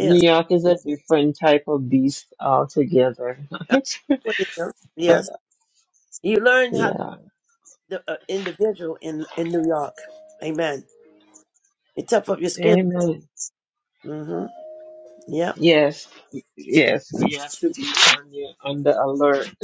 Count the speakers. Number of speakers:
2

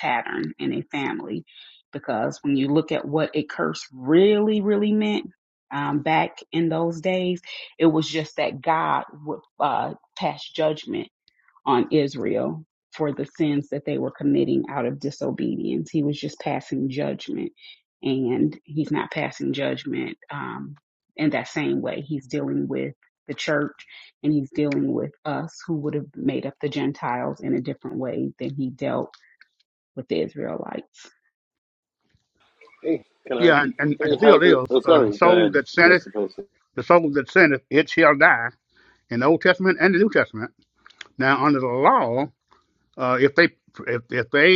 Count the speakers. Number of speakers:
3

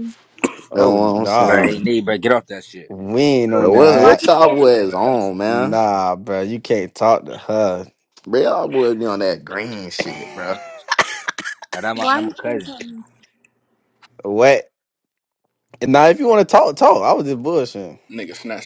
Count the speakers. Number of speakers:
5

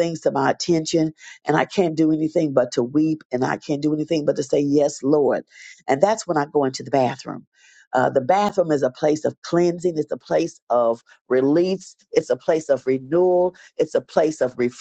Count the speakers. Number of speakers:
1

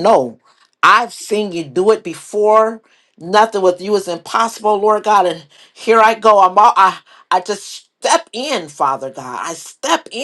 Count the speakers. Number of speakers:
1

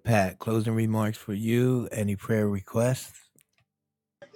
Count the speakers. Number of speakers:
1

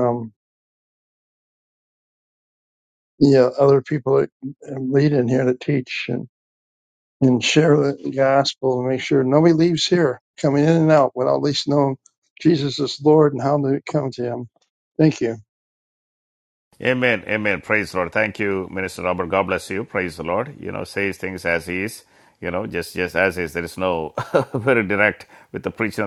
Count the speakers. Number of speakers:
2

